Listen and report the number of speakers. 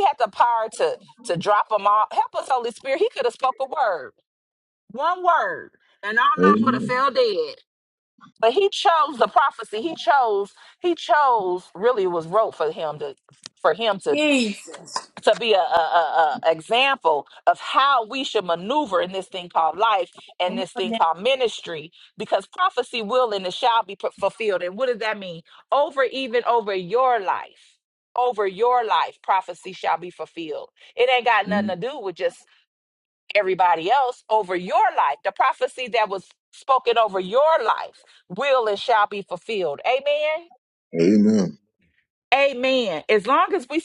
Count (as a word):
three